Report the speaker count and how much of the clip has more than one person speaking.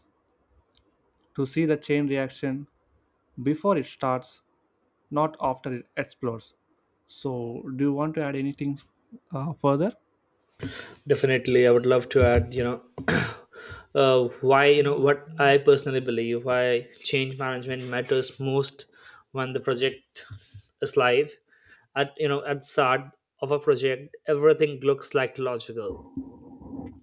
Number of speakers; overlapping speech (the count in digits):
2, no overlap